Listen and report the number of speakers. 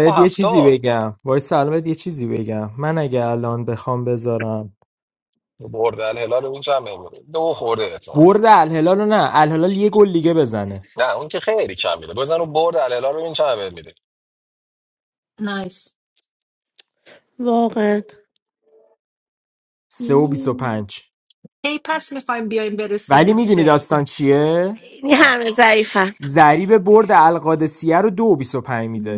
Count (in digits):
4